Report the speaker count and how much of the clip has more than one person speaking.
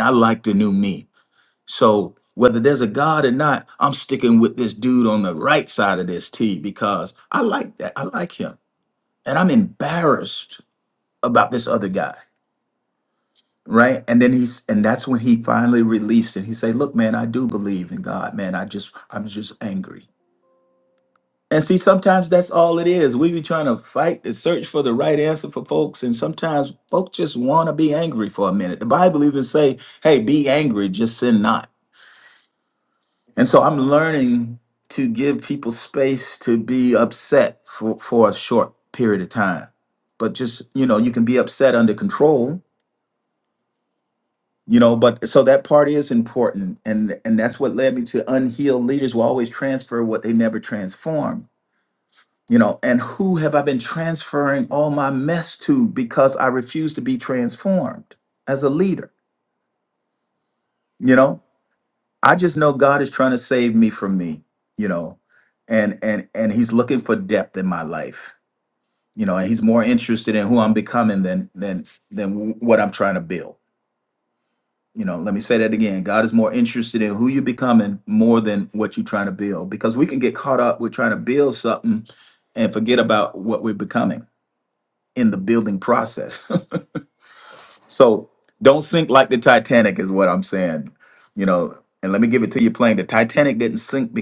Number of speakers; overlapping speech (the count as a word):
one, no overlap